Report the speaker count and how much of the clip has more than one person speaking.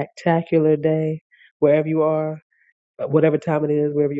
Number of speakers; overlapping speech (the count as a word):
one, no overlap